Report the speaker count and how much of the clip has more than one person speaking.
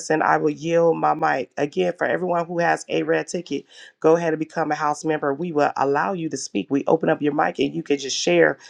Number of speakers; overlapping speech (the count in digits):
1, no overlap